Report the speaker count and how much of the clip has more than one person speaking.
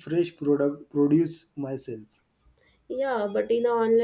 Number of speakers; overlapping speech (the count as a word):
two, no overlap